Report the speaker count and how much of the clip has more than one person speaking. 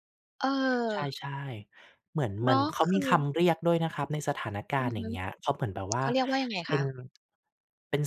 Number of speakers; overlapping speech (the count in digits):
2, about 18%